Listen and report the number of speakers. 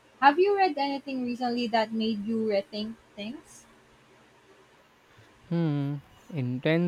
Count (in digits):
2